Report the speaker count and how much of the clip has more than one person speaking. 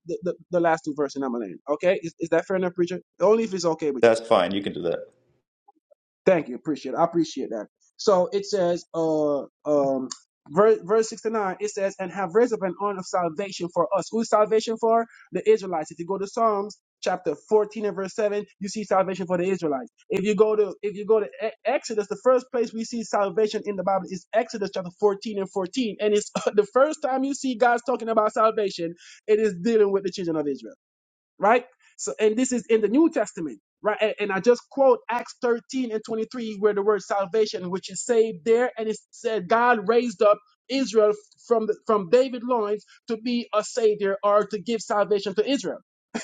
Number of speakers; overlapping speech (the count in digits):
2, under 1%